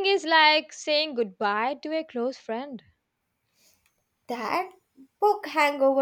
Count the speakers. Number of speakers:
2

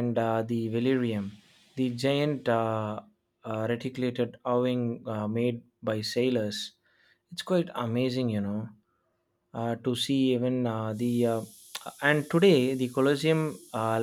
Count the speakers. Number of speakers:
1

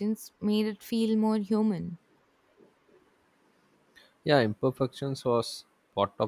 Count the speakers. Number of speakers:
2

